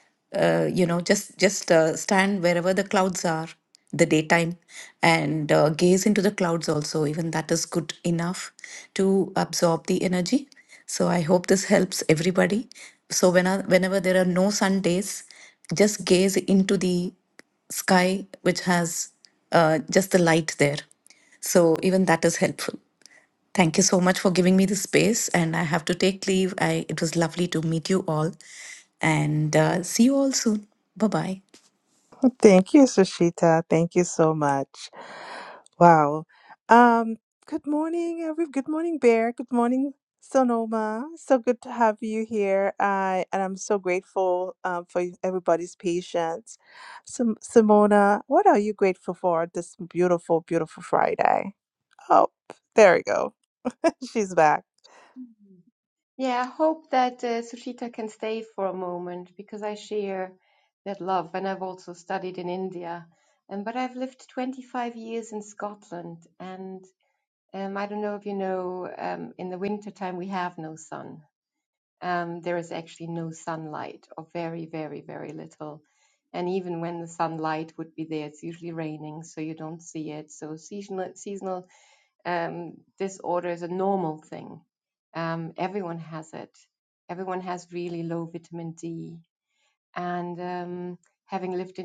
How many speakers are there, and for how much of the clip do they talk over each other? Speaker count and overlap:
three, no overlap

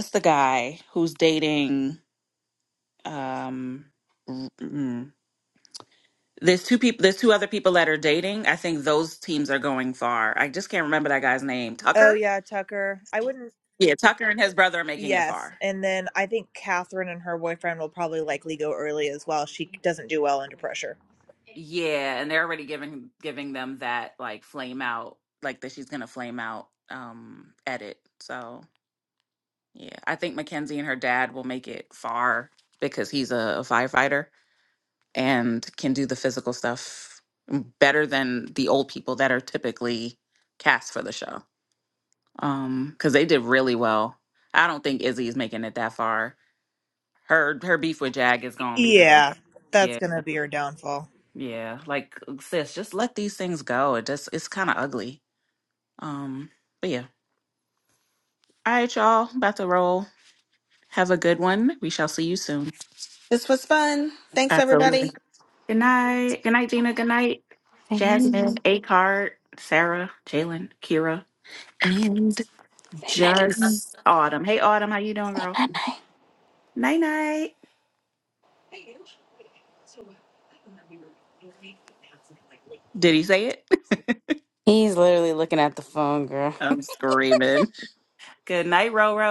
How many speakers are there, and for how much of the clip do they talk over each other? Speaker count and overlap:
four, about 2%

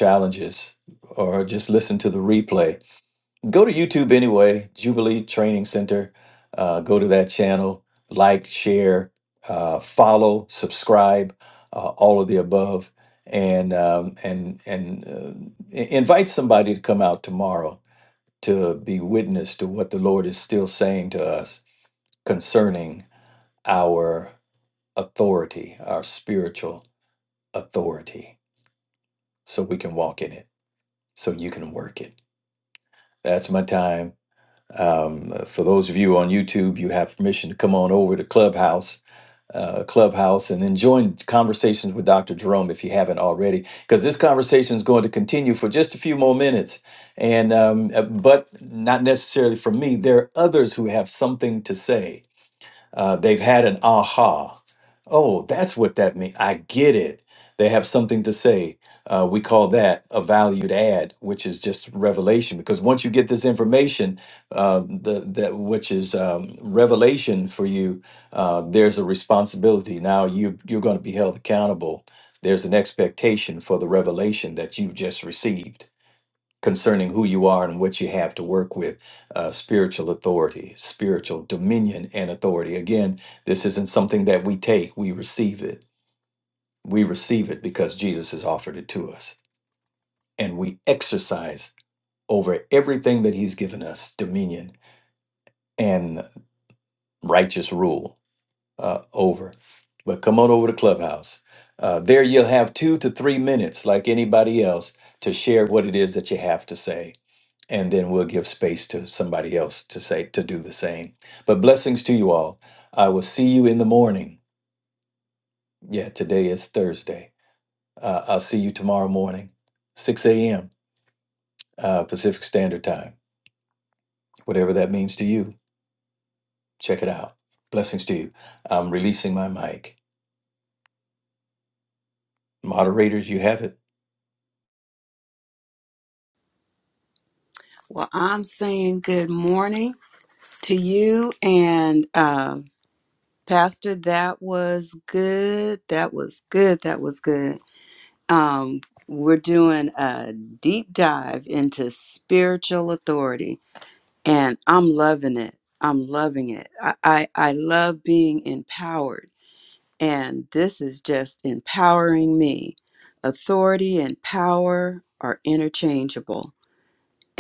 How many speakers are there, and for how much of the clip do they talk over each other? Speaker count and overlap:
two, no overlap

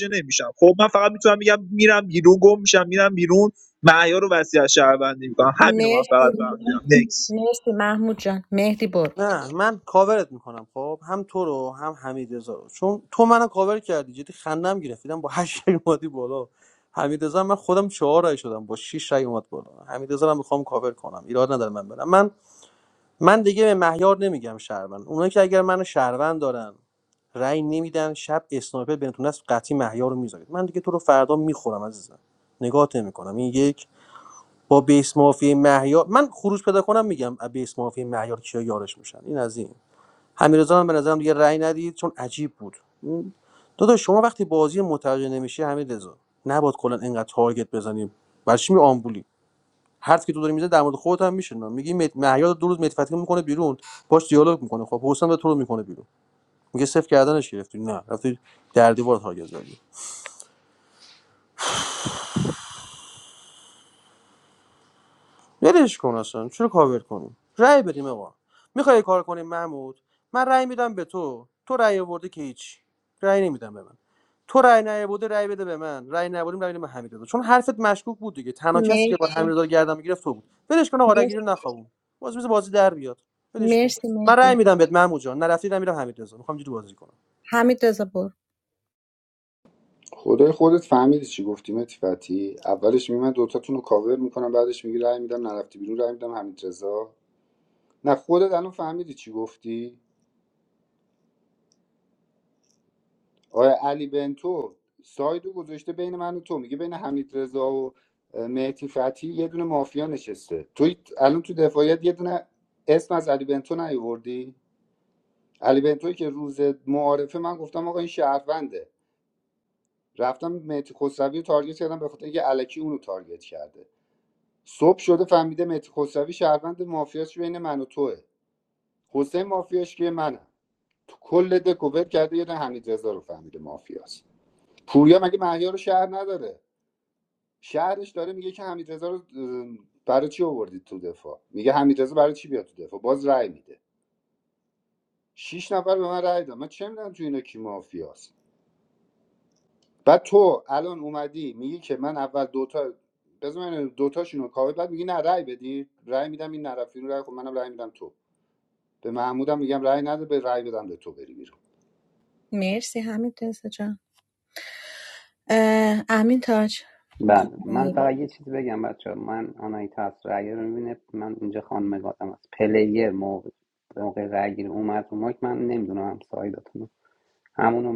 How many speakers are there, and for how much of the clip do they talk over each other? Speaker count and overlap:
five, about 1%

